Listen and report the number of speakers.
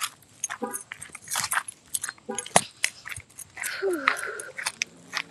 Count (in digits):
0